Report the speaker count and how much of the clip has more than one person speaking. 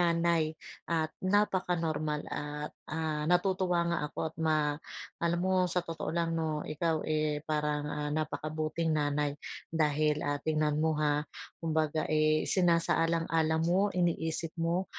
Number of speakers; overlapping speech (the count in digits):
1, no overlap